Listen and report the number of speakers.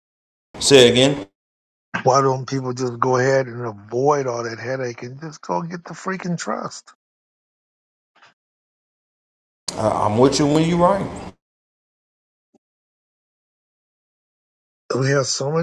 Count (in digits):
2